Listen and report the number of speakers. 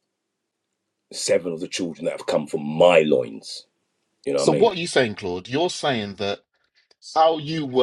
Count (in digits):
2